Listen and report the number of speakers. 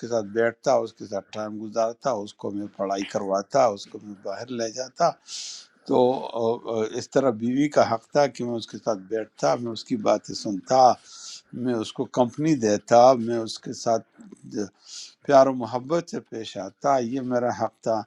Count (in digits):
1